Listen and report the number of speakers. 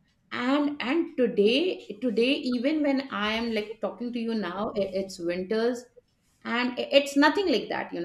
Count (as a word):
one